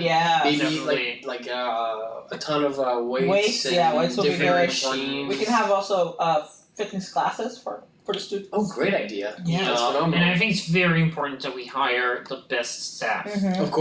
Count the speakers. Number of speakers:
three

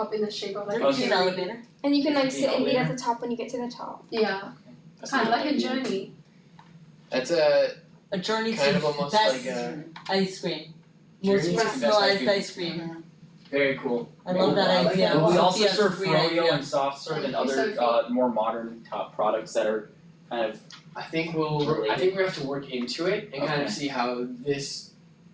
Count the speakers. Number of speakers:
five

